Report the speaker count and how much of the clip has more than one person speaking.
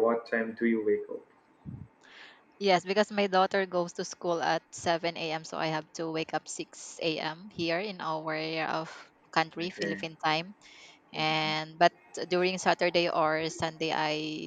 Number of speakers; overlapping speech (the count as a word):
two, about 3%